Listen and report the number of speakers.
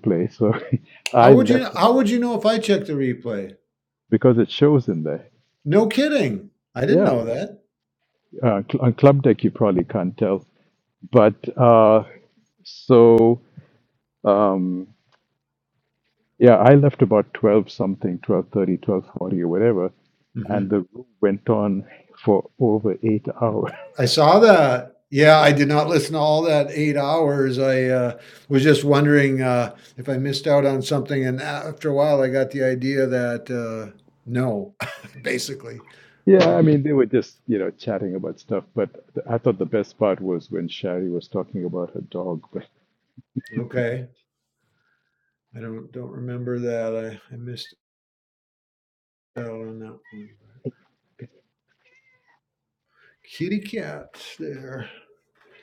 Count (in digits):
2